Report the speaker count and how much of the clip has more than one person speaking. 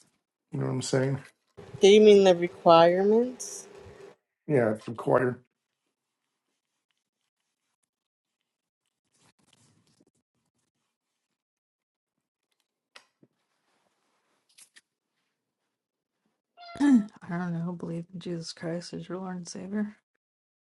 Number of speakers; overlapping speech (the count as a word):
three, no overlap